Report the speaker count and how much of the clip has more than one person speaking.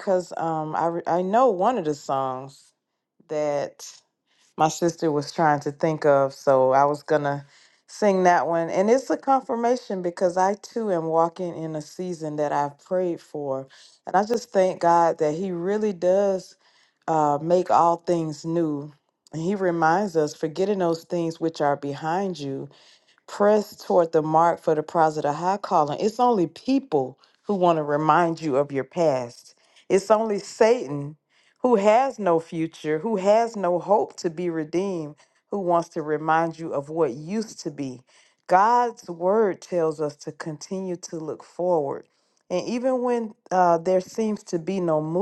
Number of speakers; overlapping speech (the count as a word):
one, no overlap